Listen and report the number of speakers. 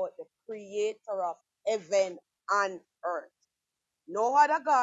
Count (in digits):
1